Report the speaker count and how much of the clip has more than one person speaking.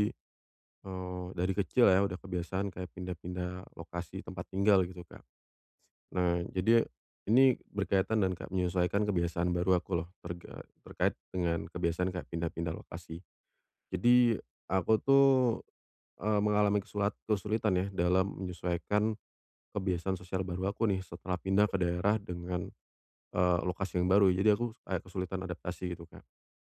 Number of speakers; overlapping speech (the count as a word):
one, no overlap